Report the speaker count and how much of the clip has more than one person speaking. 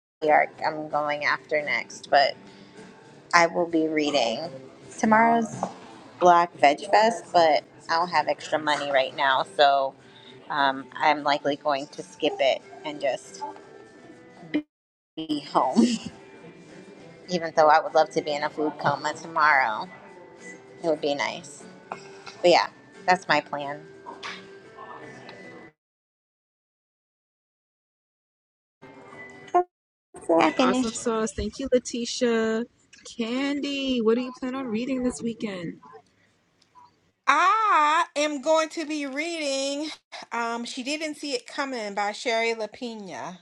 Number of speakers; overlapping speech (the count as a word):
three, about 1%